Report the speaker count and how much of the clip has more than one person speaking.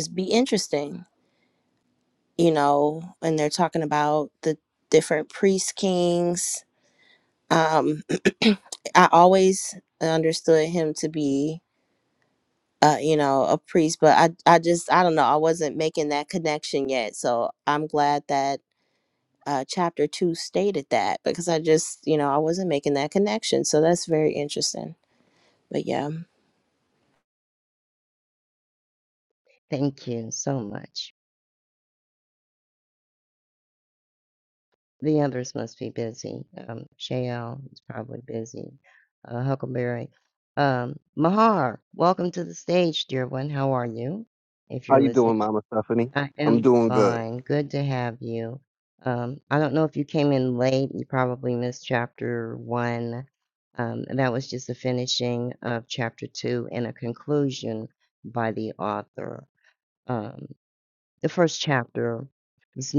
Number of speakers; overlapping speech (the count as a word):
three, about 2%